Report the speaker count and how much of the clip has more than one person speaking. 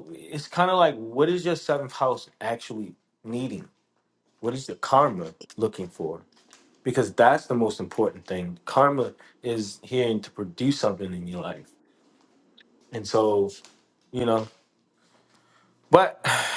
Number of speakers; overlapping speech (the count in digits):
1, no overlap